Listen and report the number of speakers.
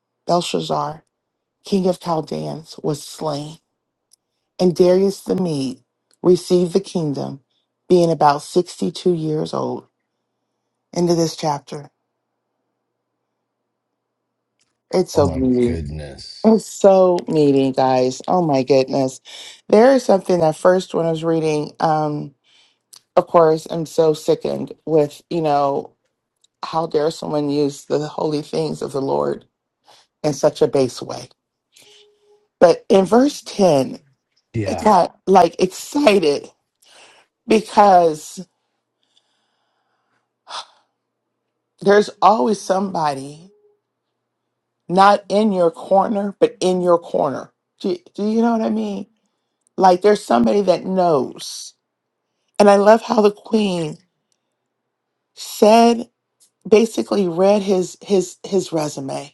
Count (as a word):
two